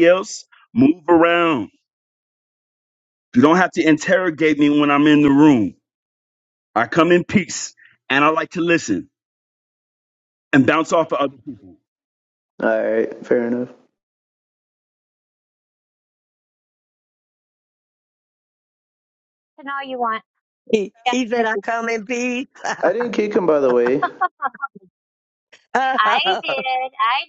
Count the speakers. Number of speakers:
4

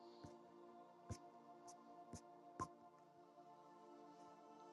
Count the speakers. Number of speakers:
0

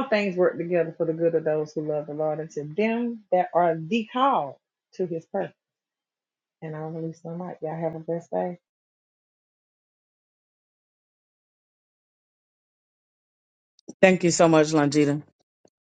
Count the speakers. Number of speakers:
2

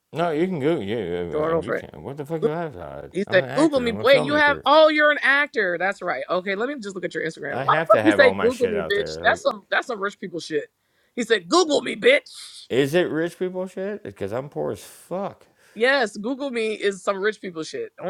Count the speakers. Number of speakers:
2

